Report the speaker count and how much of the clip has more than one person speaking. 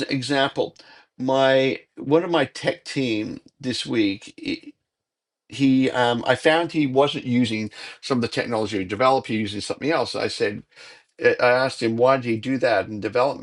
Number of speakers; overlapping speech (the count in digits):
1, no overlap